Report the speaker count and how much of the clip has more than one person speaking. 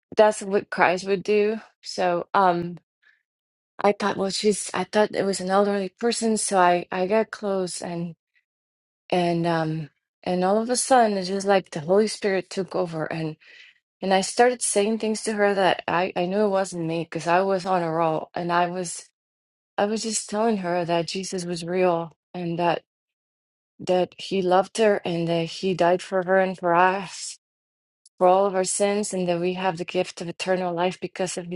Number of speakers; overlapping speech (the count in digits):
1, no overlap